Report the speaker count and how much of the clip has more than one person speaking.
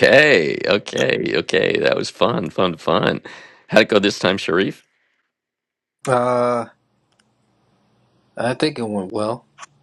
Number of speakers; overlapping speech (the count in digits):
2, no overlap